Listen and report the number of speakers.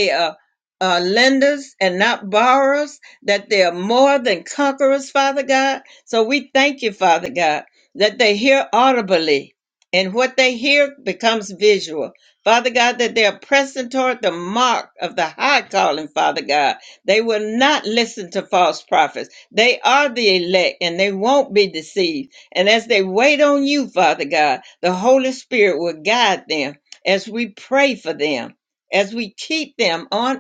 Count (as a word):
one